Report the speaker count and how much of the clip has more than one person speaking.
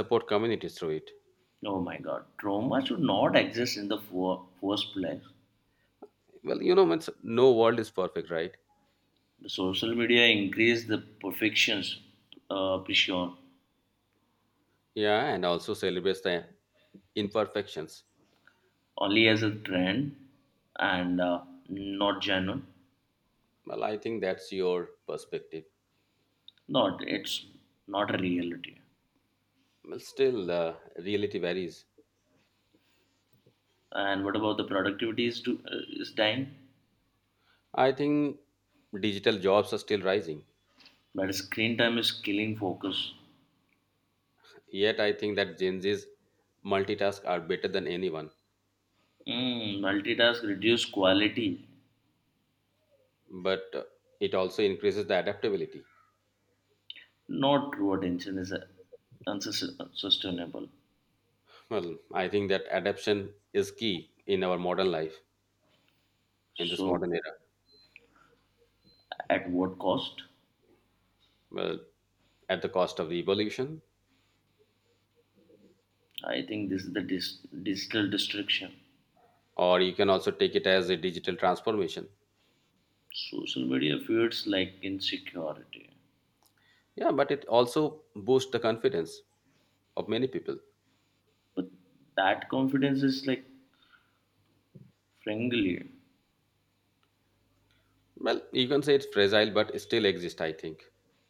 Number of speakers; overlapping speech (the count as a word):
two, under 1%